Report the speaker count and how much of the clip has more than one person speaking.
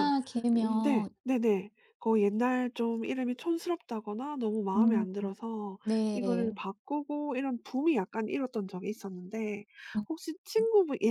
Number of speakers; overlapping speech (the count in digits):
2, about 13%